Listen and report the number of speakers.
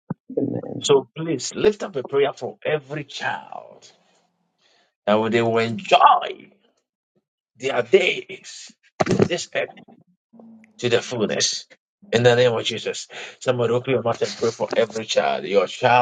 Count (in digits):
1